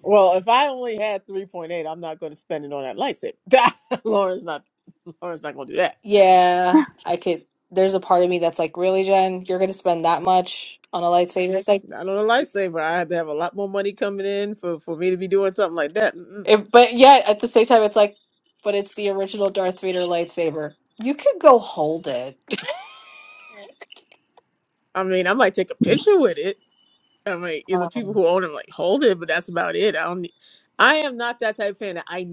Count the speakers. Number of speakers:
2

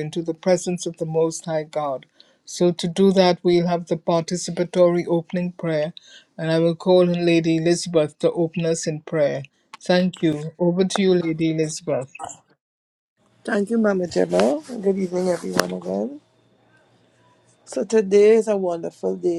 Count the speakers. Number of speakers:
2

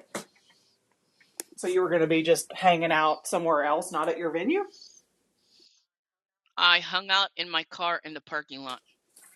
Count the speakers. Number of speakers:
2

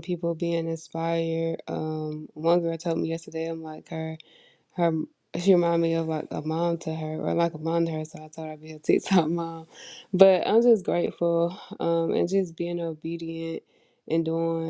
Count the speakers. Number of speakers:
1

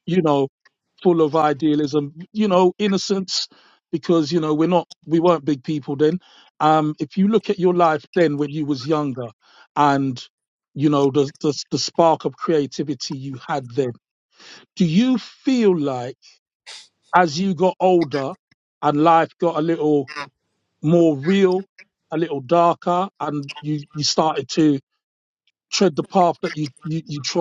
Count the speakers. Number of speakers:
1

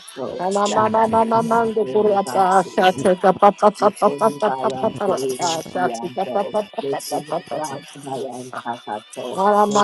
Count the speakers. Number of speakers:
2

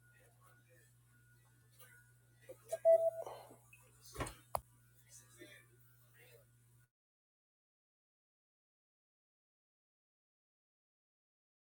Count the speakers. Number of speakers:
0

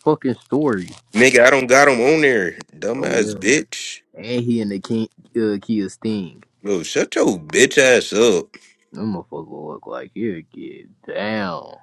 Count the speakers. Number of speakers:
2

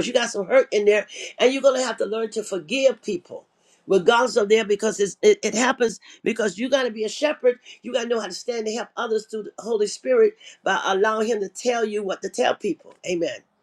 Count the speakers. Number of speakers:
1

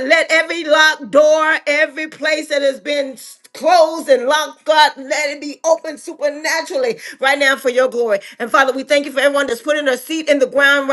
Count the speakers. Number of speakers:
1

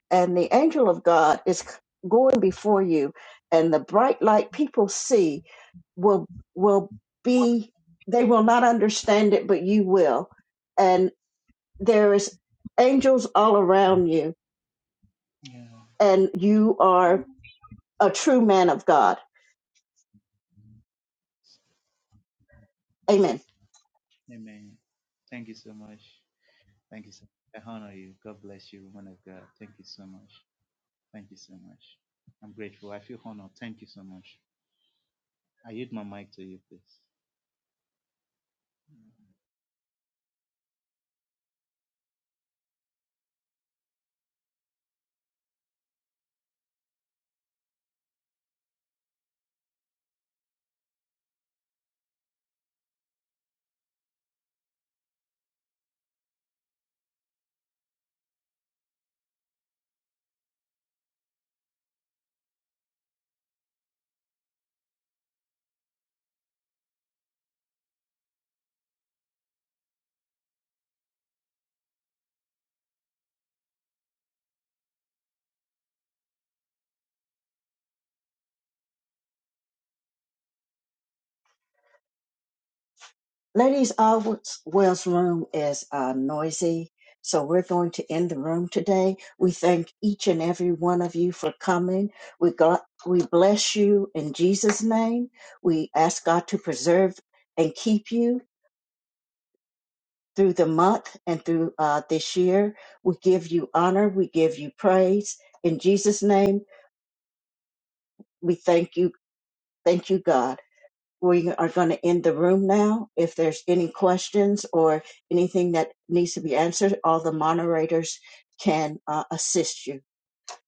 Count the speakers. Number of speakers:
2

